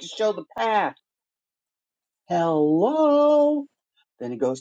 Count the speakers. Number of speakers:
1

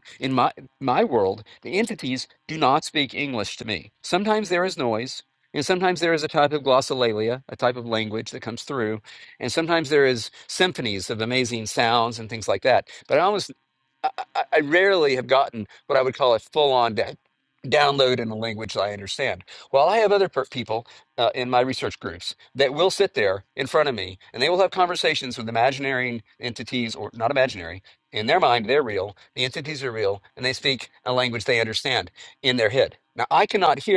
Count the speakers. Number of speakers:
1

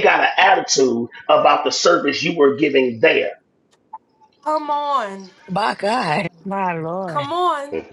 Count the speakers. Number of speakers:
3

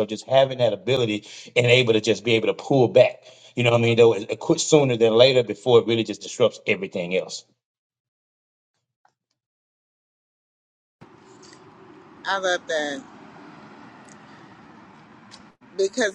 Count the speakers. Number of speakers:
2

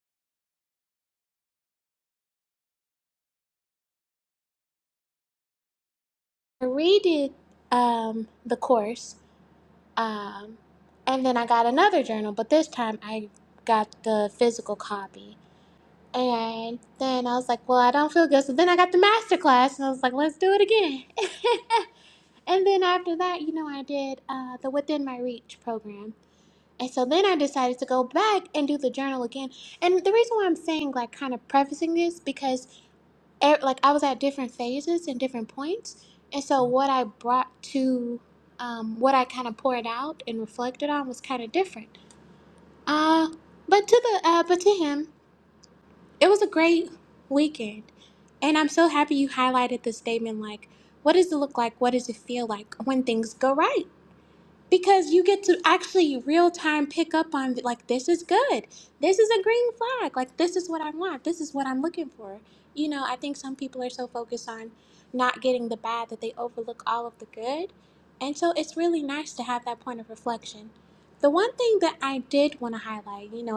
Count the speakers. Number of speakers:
1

